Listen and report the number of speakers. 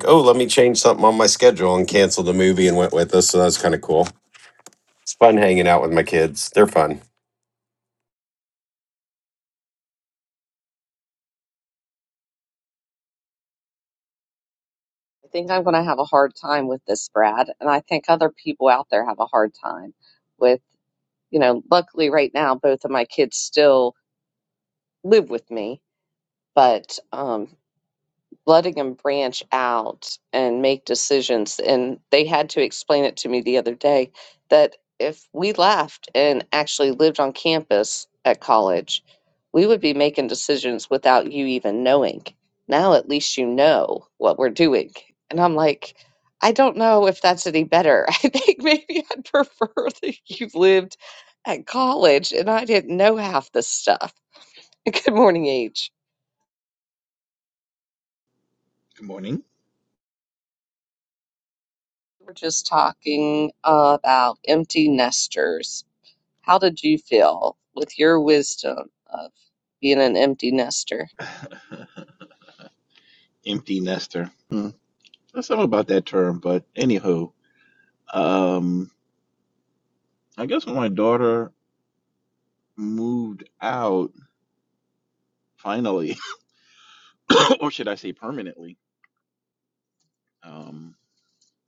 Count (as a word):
three